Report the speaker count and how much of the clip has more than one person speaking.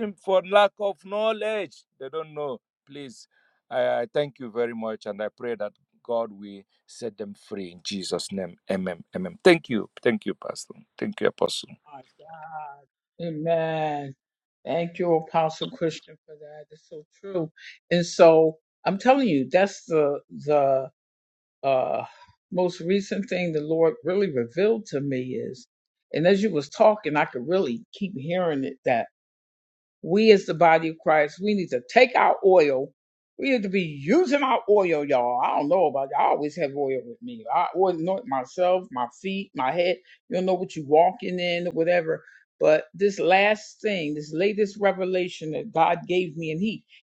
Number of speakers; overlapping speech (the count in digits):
2, no overlap